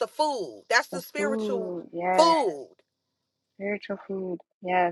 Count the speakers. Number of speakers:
two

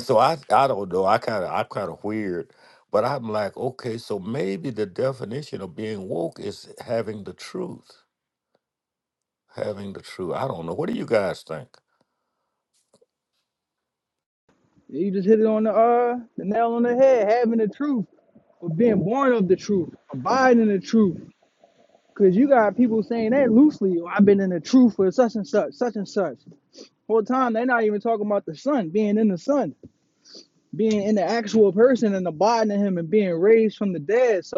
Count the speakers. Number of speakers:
two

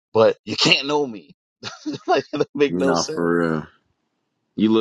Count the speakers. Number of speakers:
two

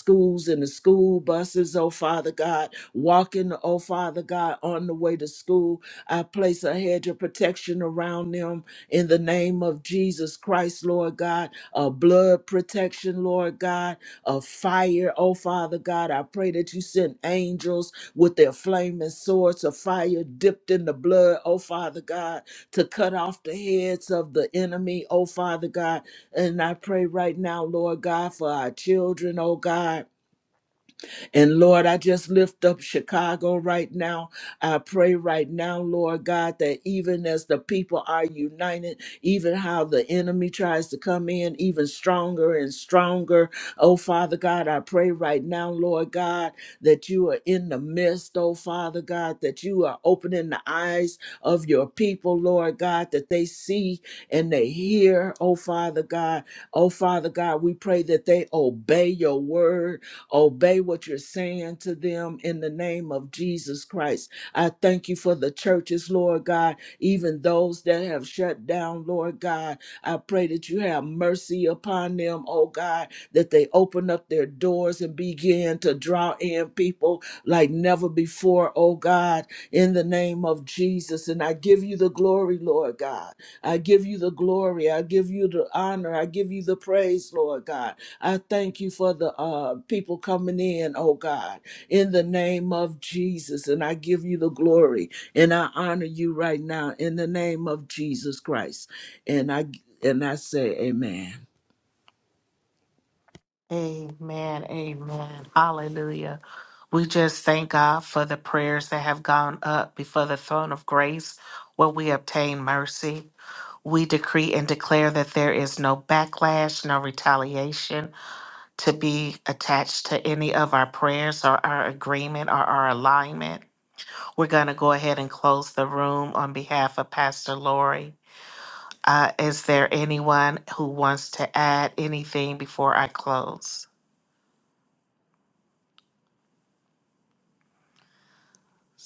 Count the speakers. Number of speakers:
two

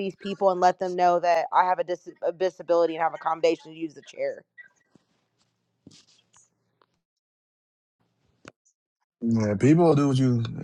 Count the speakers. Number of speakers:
two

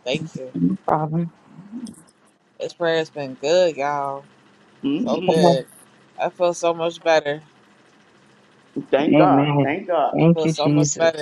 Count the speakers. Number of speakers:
three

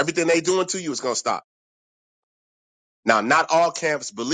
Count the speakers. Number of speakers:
one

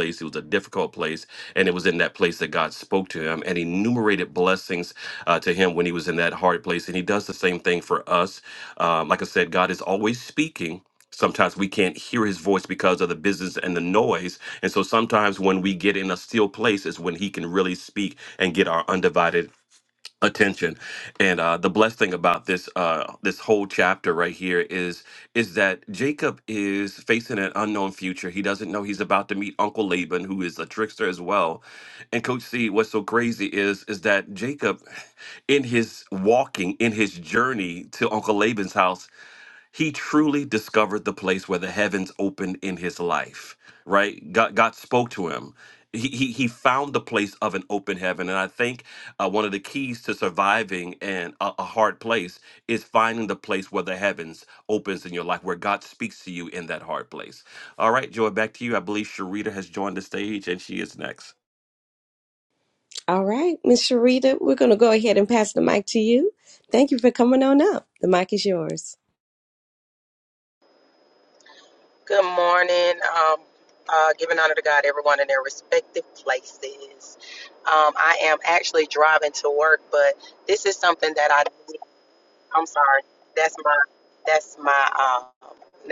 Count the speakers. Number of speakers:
three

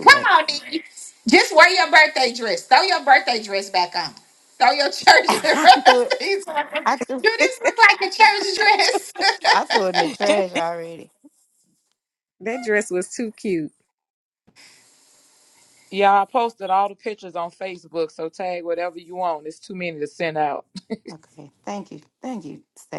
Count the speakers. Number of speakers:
four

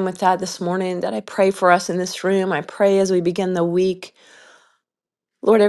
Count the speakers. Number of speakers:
one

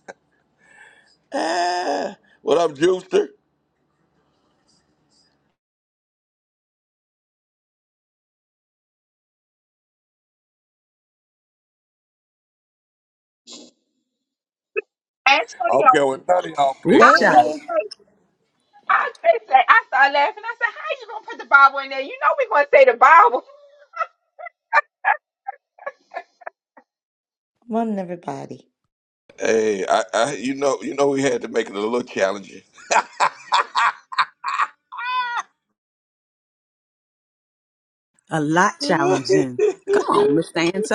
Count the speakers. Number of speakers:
four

